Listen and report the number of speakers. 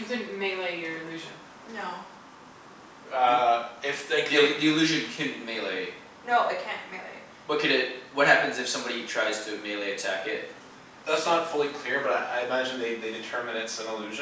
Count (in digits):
4